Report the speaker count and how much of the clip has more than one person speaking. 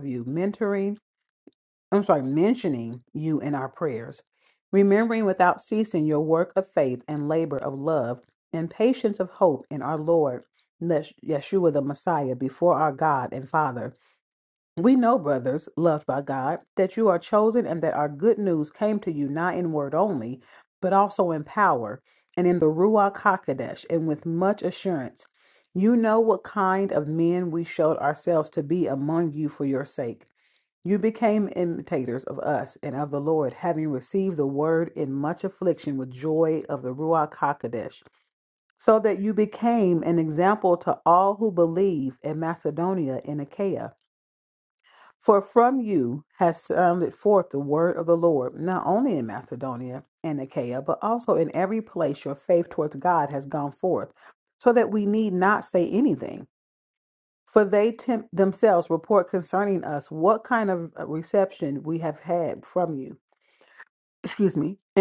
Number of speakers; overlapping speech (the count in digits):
1, no overlap